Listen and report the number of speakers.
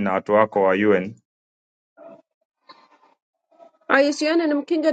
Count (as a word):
two